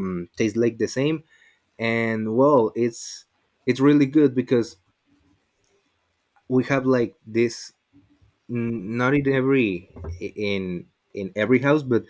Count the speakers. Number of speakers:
one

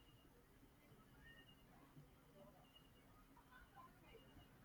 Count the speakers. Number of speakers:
zero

